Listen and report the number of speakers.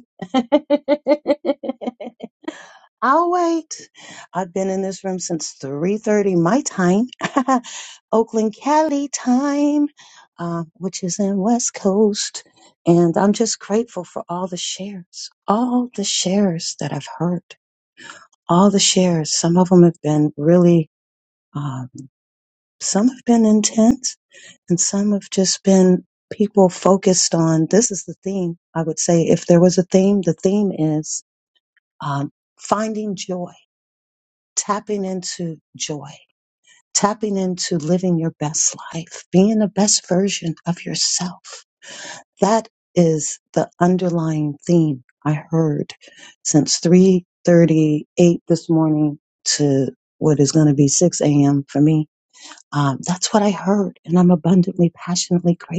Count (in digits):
1